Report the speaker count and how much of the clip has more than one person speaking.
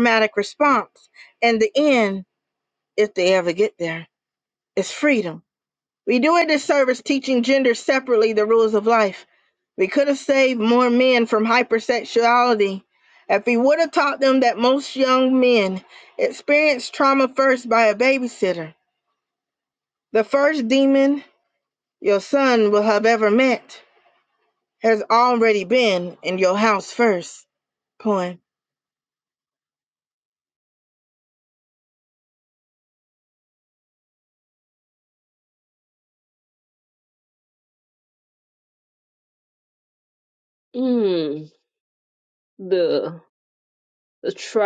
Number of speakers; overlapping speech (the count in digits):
2, no overlap